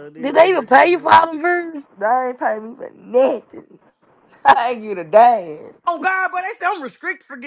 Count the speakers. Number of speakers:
3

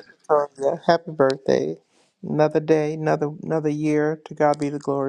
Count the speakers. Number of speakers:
1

